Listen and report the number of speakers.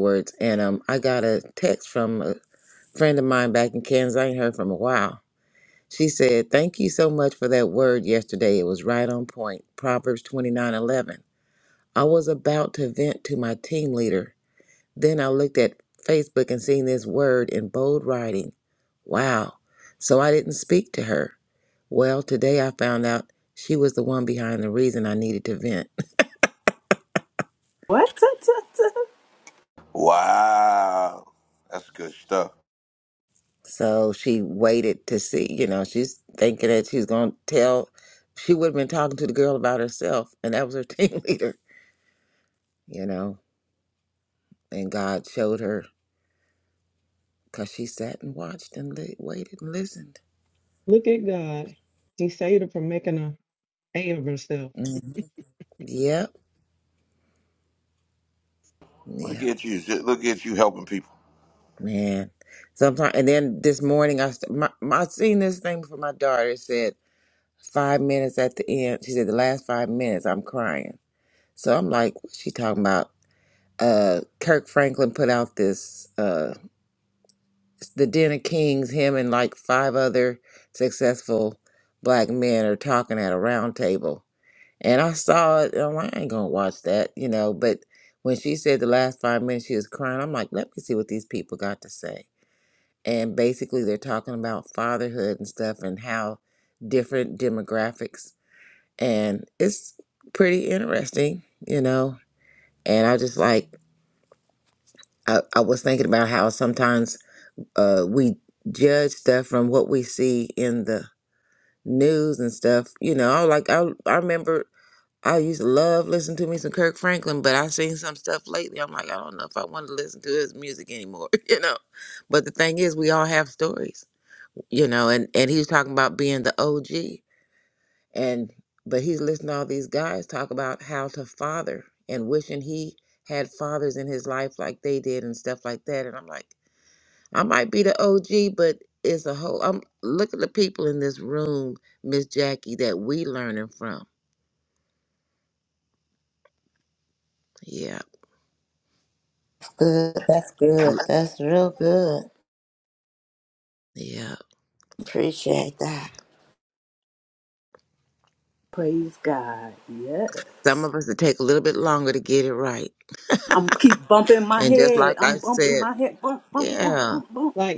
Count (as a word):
five